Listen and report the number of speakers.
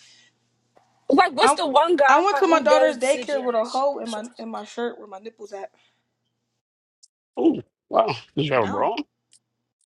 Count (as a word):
three